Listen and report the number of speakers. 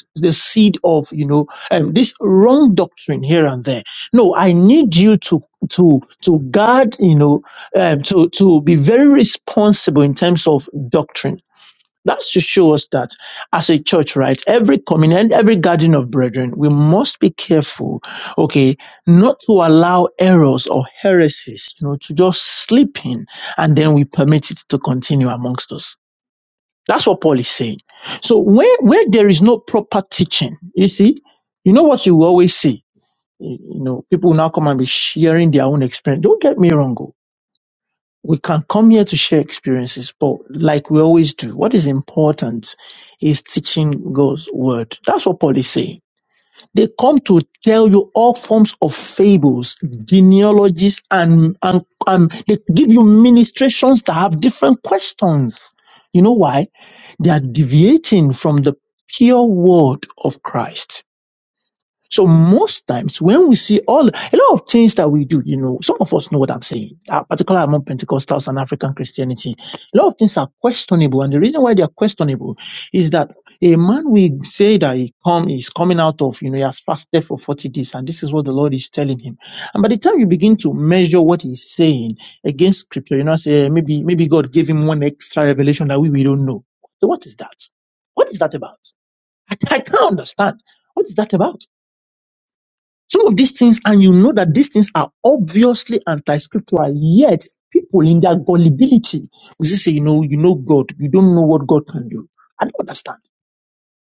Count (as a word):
one